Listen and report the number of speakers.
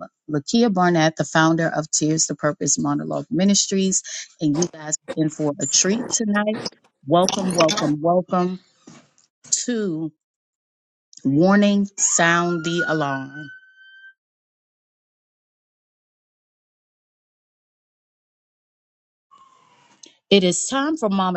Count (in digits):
1